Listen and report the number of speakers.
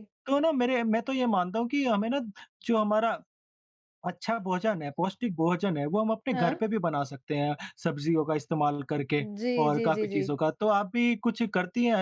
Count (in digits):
2